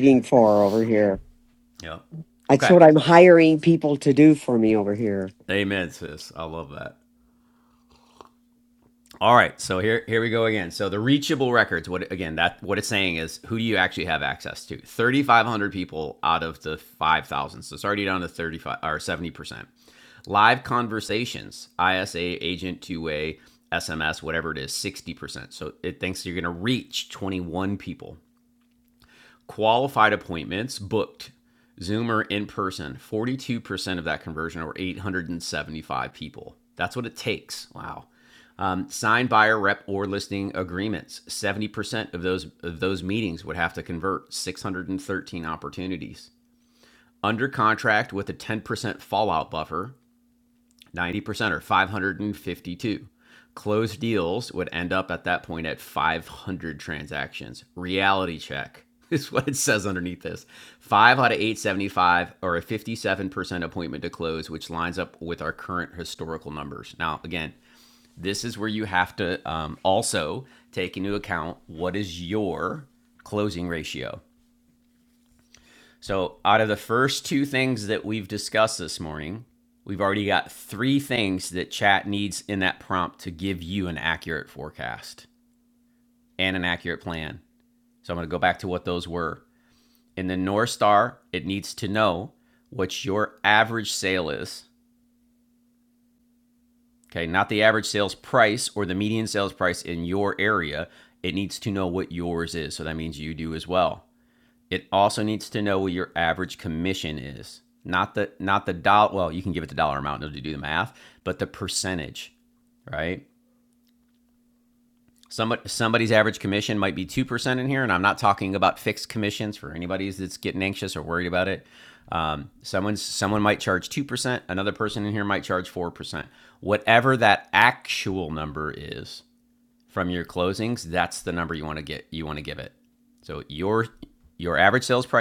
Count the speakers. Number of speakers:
two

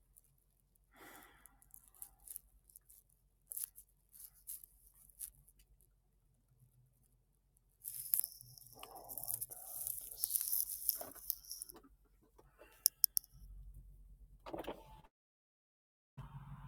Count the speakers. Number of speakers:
zero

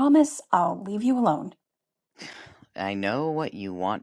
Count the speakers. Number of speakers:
two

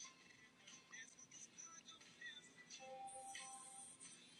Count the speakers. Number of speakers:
zero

